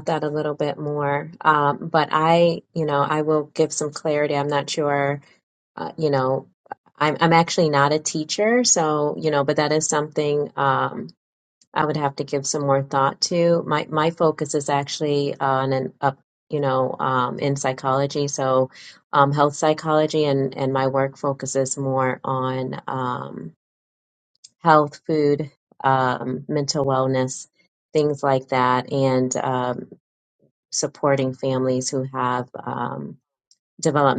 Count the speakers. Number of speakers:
1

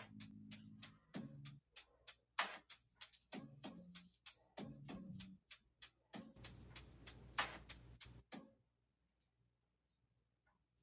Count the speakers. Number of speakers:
0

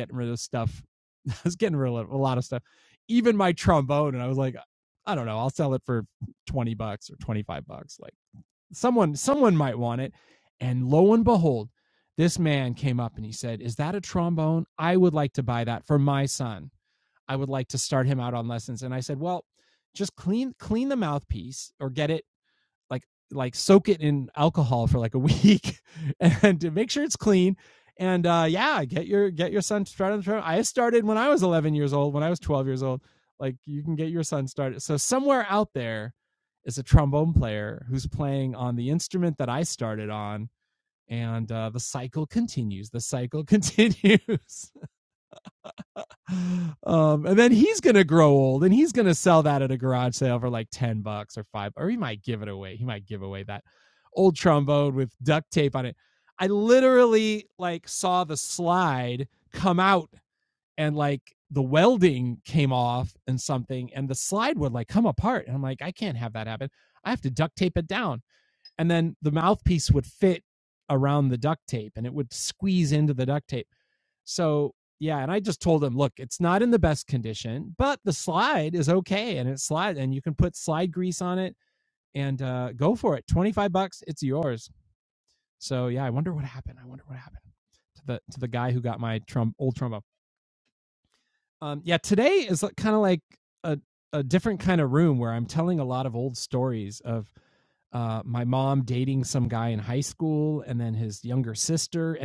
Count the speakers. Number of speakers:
1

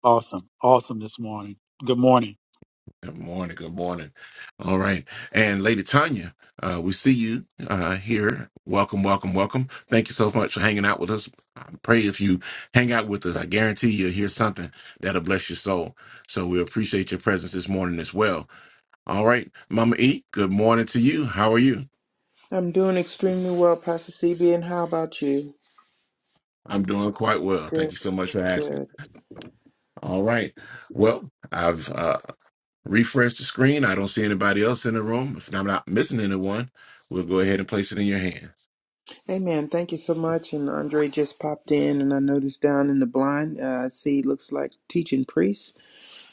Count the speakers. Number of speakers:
3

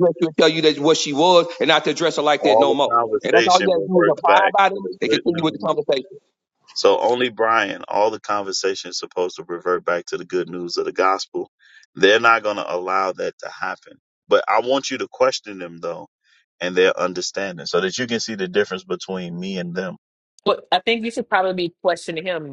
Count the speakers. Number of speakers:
3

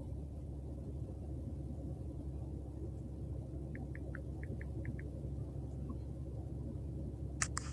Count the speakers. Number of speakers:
0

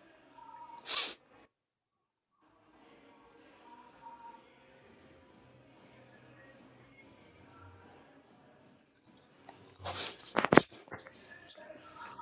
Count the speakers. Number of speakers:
0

